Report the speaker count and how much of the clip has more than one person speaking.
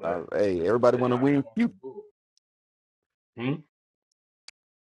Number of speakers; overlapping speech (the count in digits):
2, about 16%